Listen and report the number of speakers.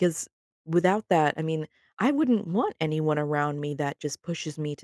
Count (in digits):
1